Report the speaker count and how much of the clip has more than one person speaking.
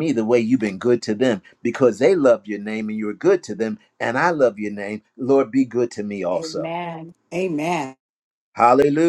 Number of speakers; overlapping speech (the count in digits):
2, about 4%